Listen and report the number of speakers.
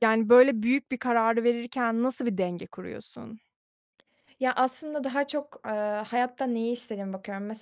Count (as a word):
two